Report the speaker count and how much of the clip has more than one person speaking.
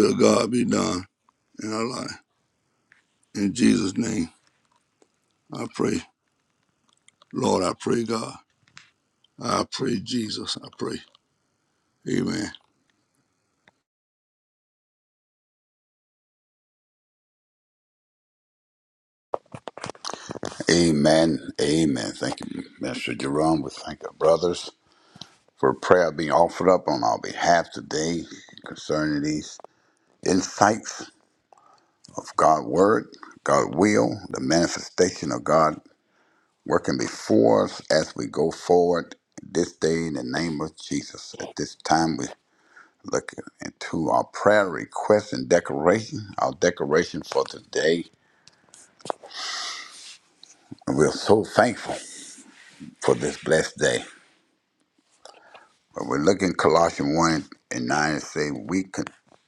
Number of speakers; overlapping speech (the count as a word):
two, no overlap